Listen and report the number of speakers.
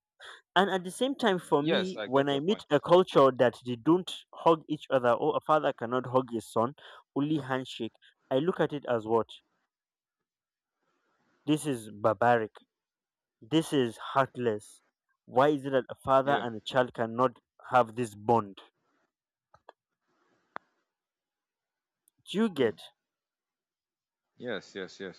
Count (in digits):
2